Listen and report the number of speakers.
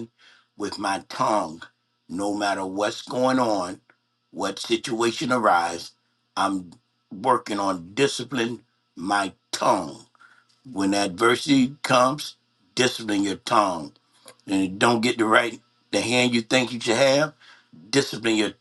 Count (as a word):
one